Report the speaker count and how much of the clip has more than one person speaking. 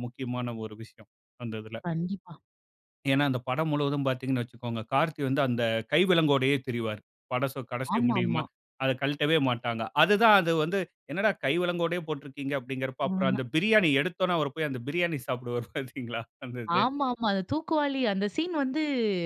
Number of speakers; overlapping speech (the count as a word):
two, about 5%